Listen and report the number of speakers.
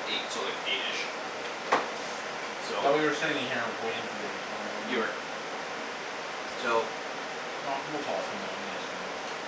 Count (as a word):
two